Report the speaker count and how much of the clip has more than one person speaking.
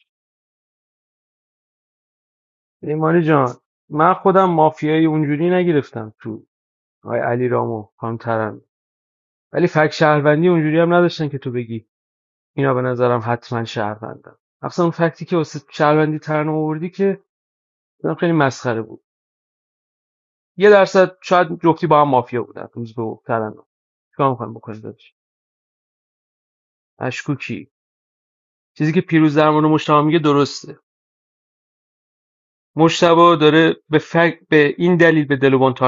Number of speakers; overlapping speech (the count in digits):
1, no overlap